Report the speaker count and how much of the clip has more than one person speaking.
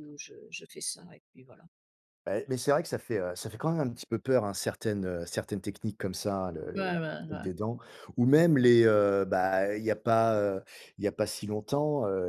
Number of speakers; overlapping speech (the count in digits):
2, about 6%